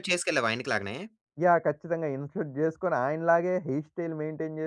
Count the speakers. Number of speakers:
2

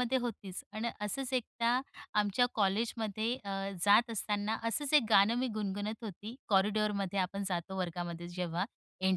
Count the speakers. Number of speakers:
1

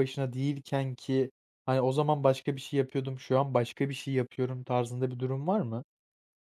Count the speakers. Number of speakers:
1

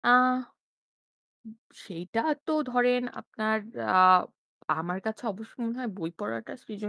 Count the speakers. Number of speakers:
1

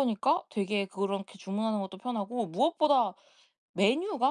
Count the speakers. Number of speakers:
1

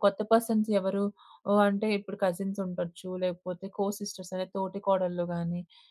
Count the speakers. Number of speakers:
1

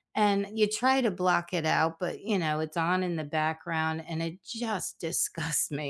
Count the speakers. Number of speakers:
1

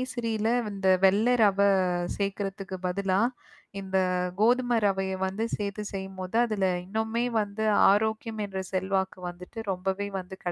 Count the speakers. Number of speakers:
1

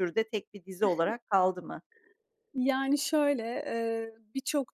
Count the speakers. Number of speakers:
2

